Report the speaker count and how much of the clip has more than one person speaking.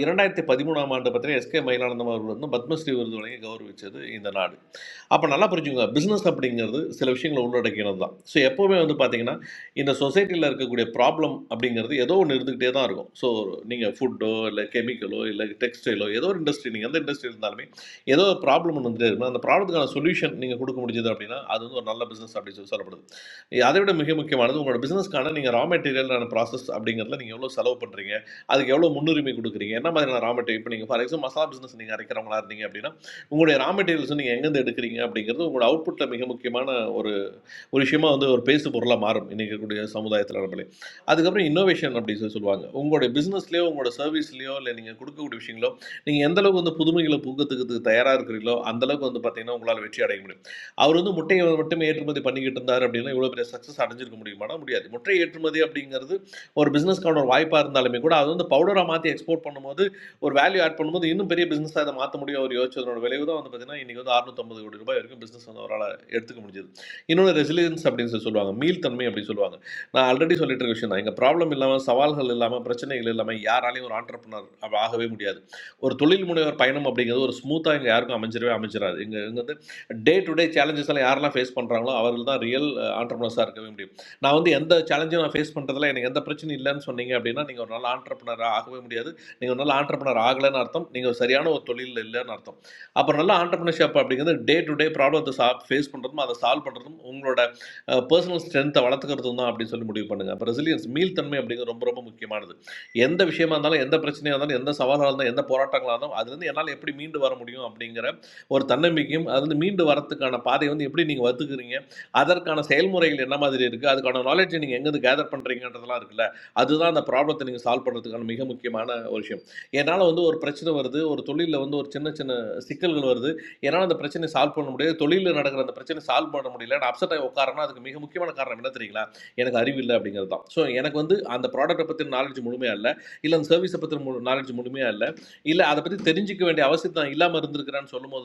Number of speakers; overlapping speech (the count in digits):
1, no overlap